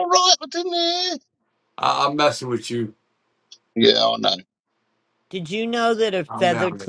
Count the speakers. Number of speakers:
three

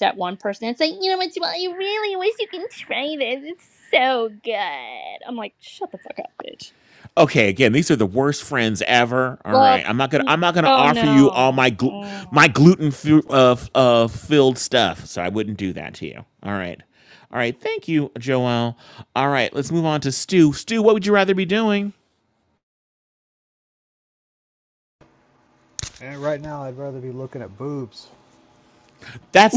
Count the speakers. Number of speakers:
three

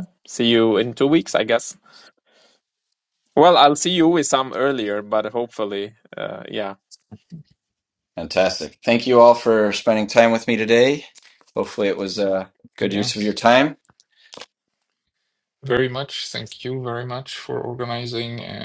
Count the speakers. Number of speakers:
three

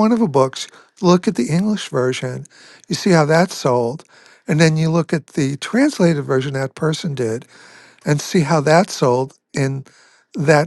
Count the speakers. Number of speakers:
one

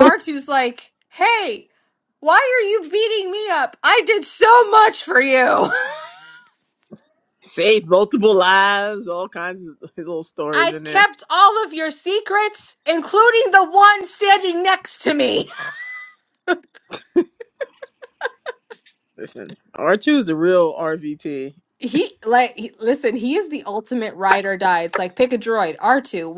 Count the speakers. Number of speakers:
two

